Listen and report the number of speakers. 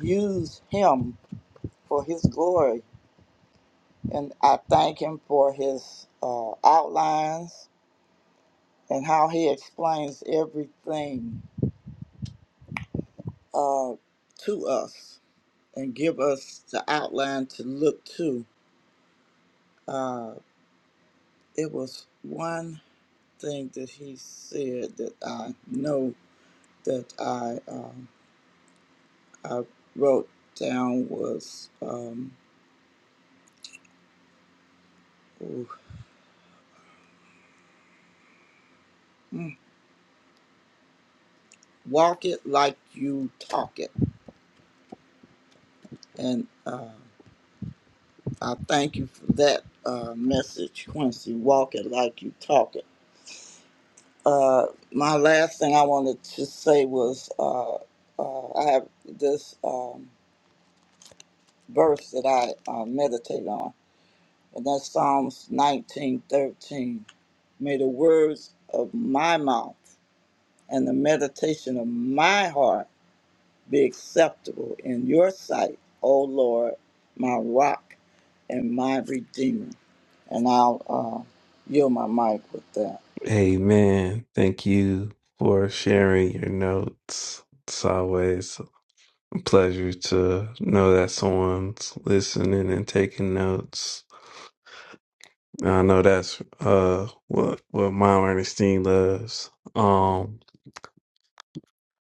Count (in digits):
2